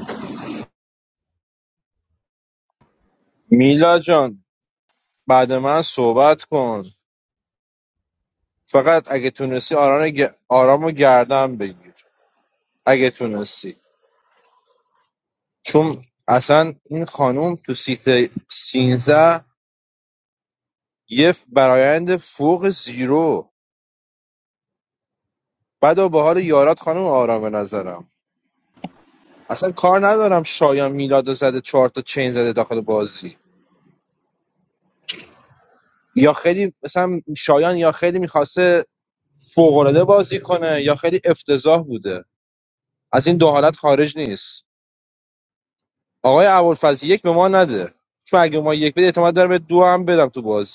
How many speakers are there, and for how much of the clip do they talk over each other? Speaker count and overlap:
one, no overlap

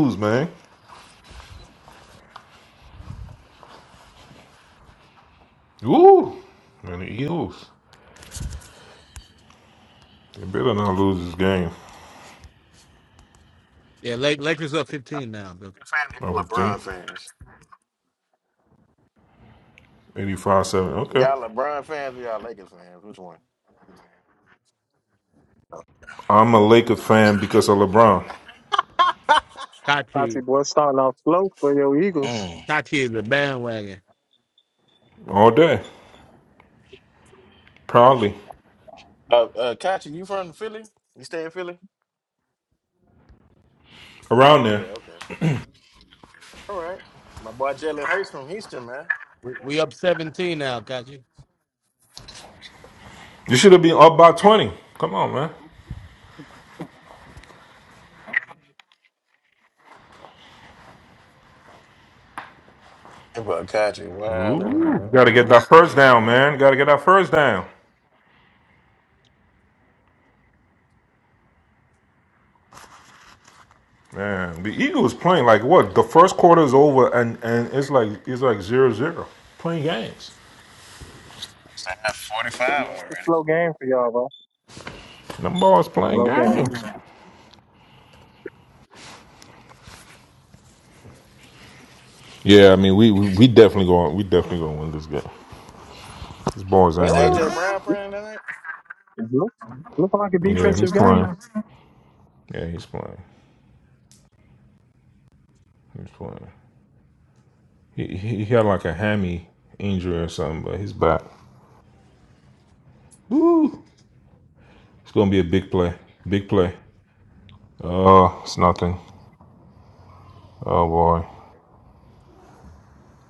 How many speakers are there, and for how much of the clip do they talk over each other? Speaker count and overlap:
four, about 3%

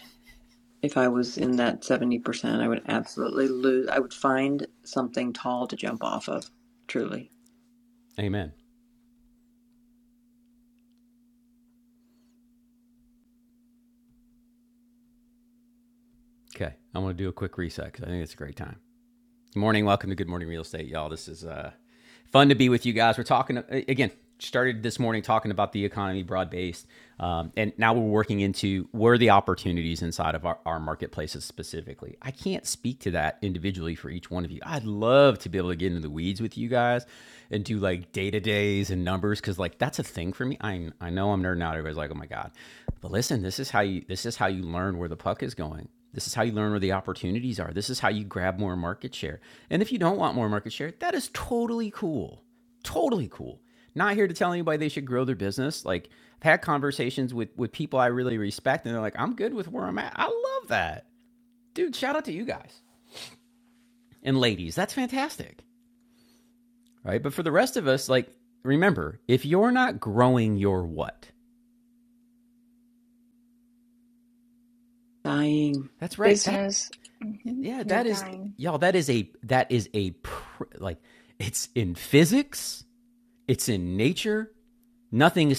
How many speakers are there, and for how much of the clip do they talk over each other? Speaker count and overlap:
three, about 1%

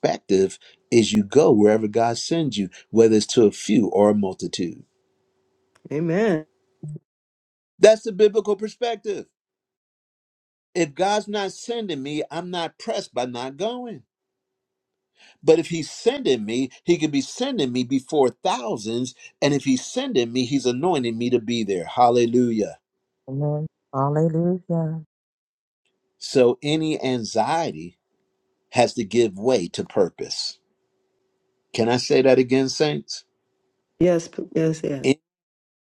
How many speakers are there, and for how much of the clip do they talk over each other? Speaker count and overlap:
three, under 1%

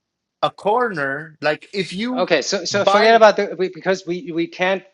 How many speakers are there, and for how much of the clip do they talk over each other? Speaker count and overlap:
two, about 12%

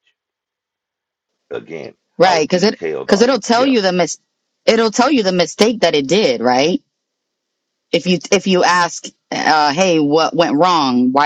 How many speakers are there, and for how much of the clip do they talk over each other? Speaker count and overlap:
two, about 11%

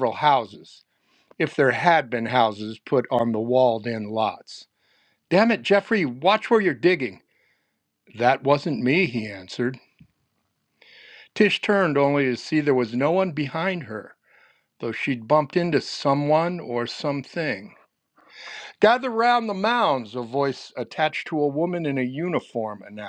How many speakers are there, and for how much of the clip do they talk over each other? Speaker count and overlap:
one, no overlap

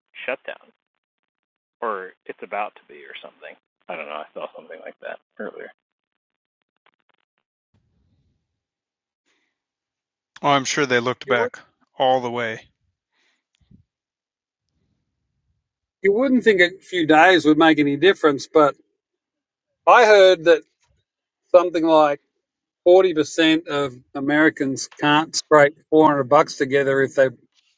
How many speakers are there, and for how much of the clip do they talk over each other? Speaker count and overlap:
three, about 1%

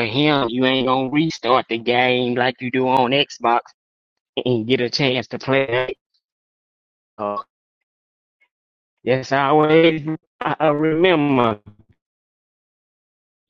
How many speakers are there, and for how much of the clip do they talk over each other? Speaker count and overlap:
one, no overlap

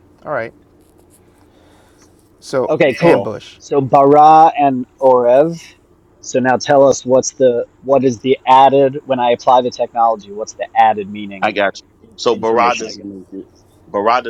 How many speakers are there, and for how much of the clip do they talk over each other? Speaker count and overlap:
three, about 10%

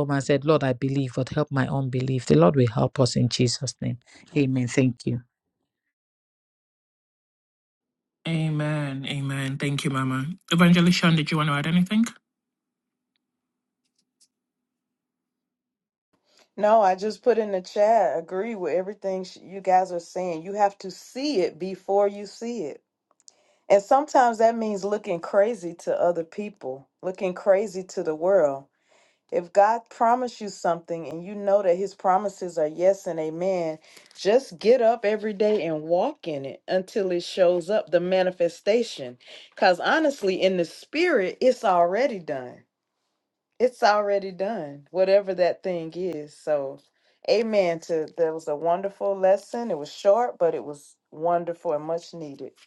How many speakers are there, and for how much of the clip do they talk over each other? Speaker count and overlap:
three, no overlap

